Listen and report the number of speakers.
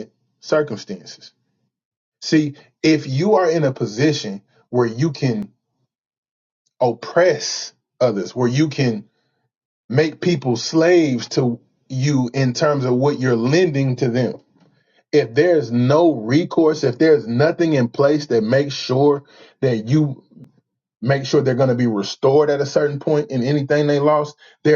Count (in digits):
1